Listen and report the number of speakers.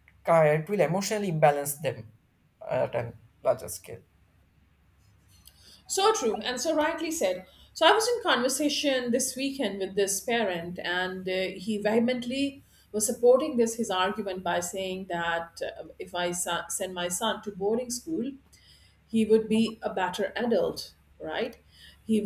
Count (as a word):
two